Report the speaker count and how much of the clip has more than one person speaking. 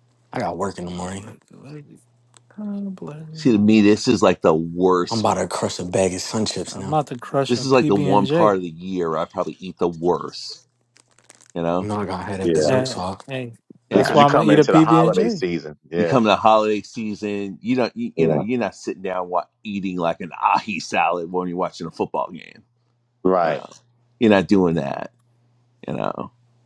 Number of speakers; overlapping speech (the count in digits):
4, about 17%